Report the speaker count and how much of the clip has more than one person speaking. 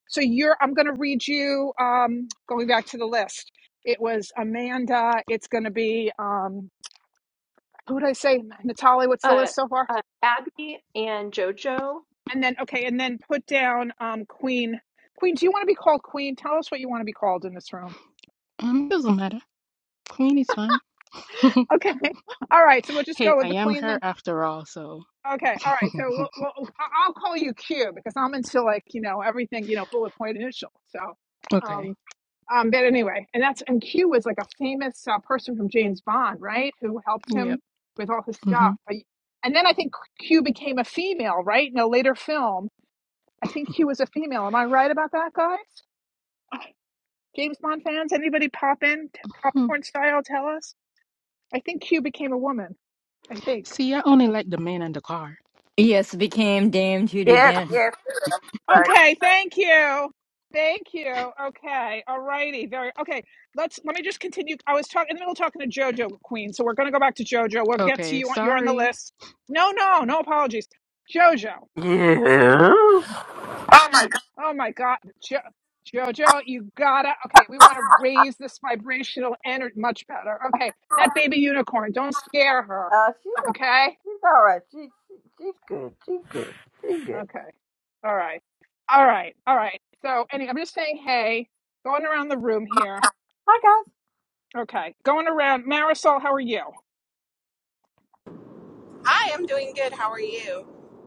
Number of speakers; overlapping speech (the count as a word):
six, about 4%